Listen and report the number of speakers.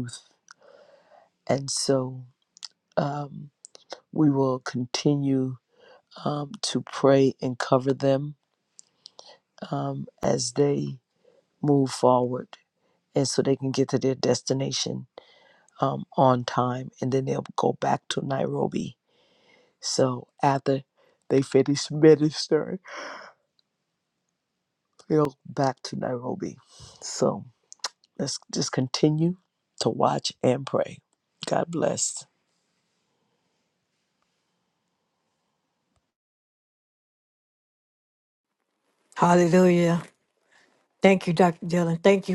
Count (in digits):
2